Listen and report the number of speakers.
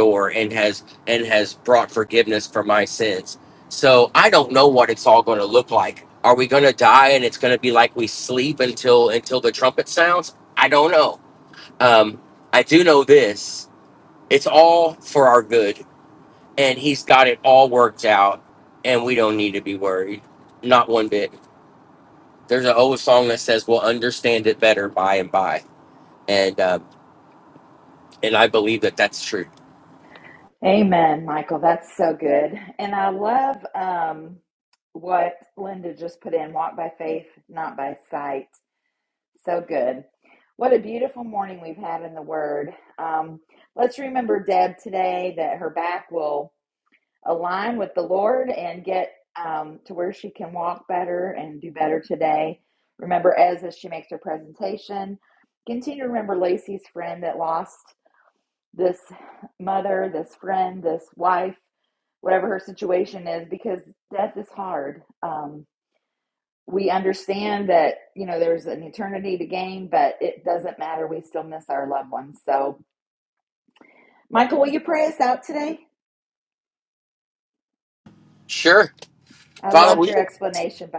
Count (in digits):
2